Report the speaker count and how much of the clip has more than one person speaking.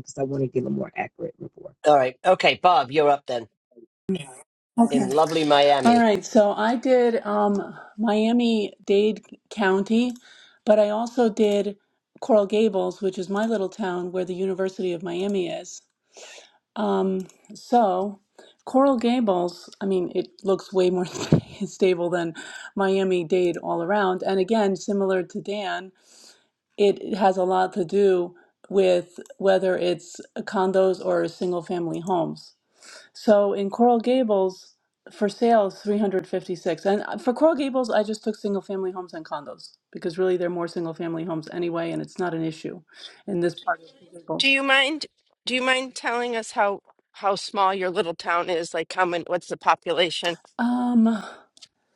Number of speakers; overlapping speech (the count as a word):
four, under 1%